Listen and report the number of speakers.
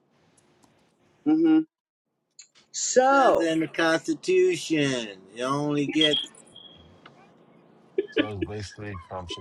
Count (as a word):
three